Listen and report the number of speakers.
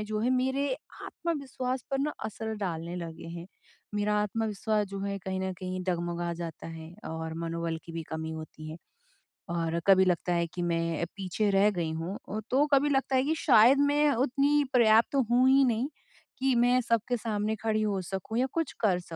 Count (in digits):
1